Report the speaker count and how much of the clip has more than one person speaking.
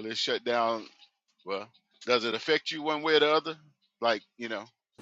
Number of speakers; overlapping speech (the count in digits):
1, no overlap